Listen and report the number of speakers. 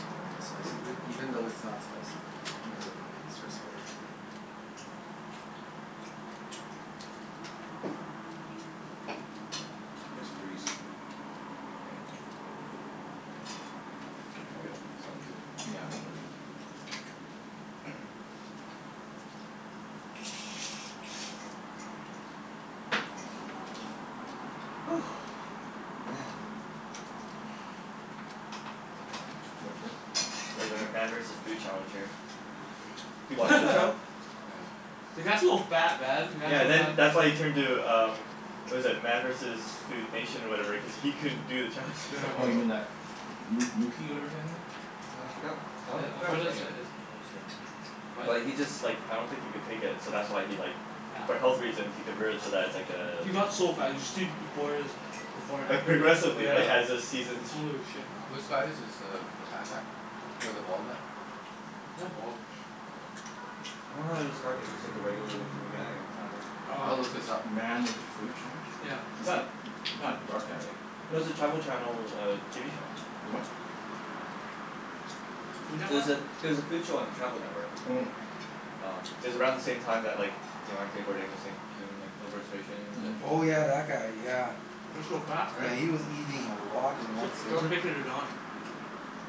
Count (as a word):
four